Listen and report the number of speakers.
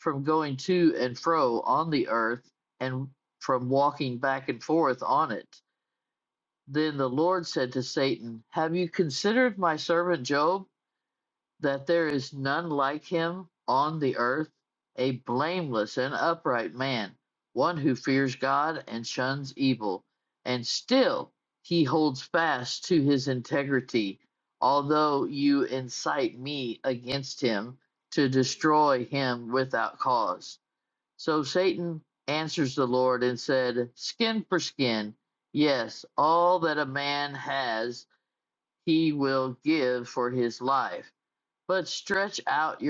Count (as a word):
one